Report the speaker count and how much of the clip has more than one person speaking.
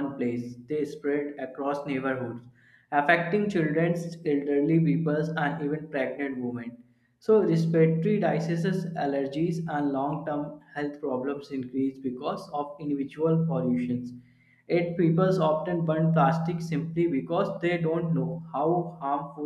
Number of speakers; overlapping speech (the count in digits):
1, no overlap